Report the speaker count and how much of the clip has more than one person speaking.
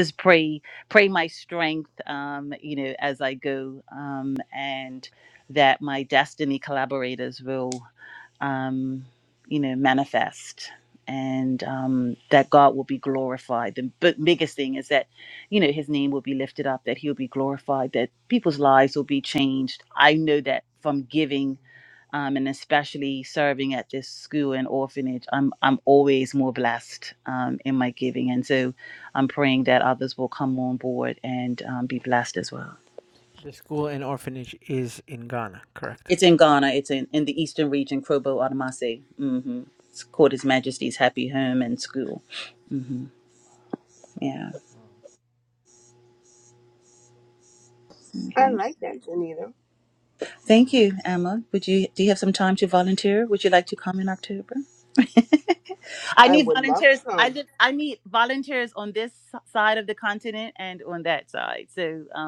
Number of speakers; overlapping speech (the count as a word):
three, about 3%